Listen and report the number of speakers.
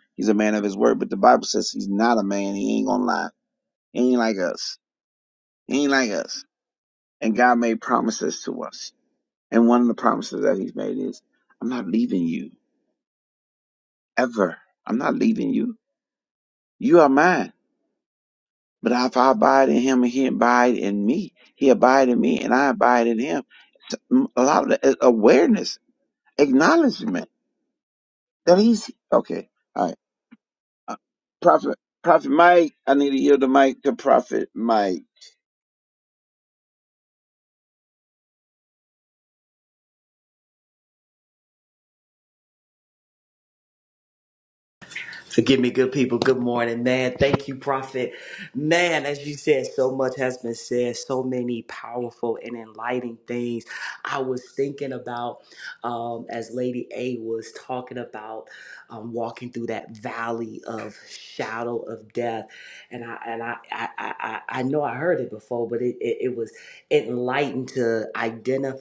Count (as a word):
two